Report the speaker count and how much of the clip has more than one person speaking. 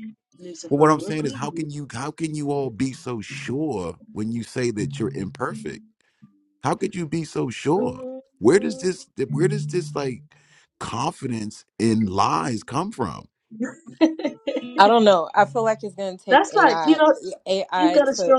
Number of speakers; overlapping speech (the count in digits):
3, about 16%